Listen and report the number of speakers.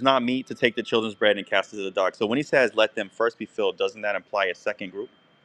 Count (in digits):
1